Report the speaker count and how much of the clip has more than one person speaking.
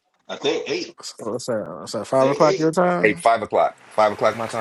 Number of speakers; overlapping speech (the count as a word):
three, about 13%